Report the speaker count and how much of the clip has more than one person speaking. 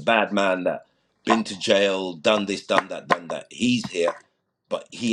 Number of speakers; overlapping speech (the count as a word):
one, no overlap